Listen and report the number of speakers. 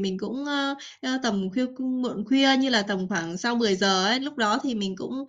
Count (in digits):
1